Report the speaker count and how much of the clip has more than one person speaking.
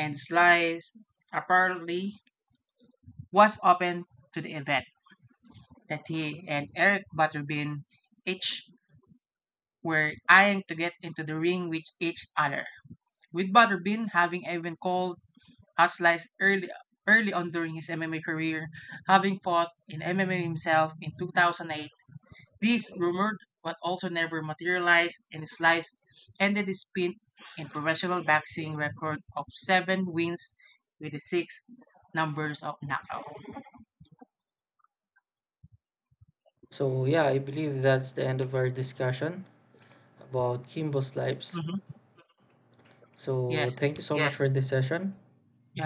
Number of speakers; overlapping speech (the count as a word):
two, about 1%